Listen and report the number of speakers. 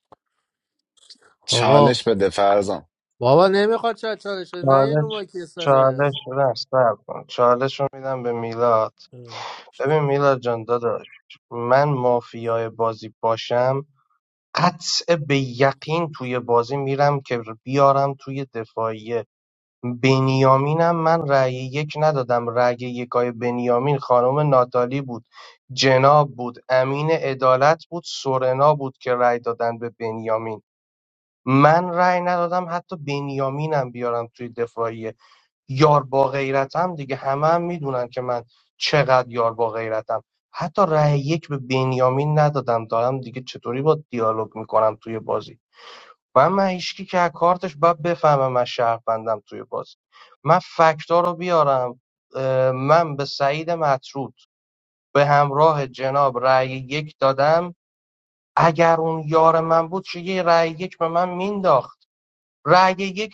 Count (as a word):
three